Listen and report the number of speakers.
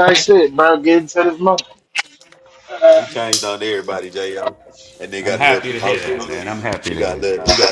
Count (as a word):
three